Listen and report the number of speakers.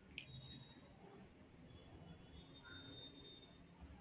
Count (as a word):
zero